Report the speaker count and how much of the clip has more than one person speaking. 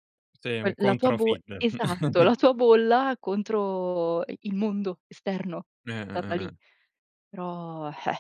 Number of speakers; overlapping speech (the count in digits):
2, about 9%